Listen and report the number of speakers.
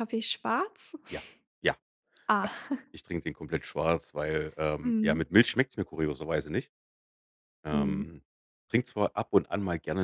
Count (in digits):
2